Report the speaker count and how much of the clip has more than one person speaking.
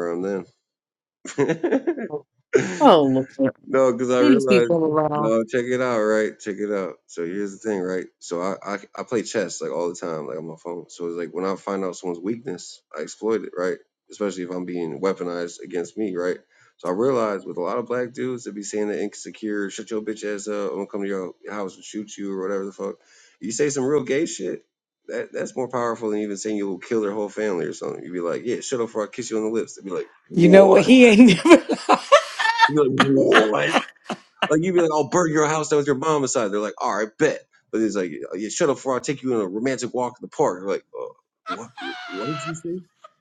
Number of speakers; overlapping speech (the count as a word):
three, about 3%